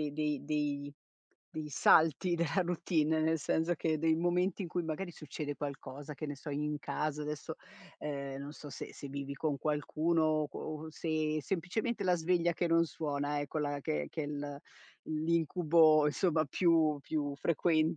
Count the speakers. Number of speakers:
1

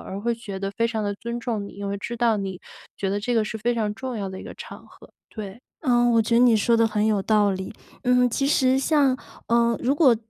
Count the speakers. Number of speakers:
2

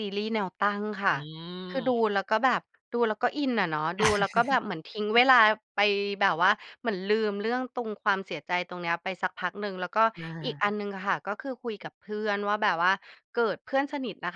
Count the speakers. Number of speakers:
2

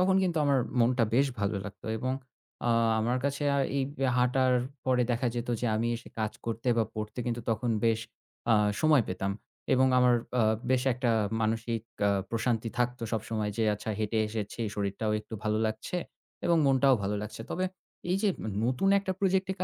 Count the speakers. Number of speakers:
1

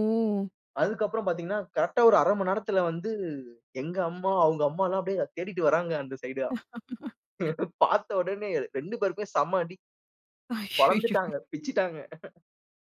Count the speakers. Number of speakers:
2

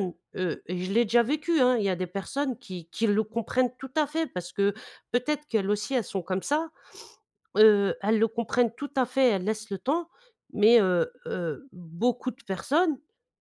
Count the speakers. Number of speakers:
1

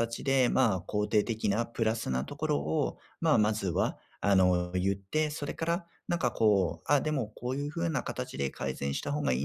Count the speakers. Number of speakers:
1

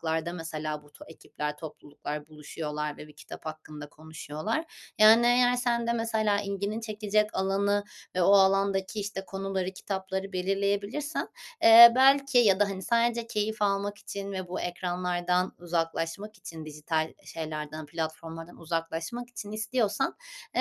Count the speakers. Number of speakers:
1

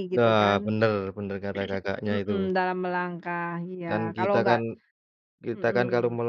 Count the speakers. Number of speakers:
2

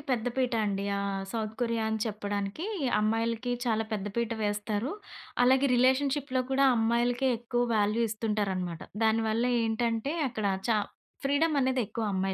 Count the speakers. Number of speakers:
1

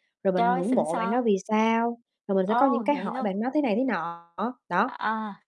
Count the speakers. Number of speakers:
2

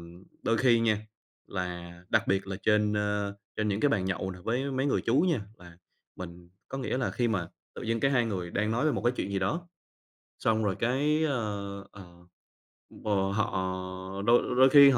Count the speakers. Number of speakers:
1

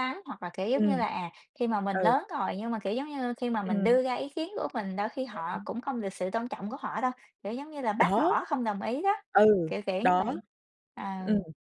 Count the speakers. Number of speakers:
2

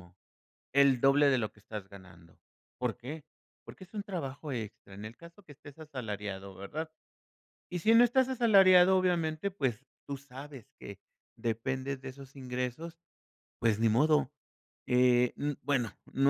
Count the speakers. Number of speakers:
1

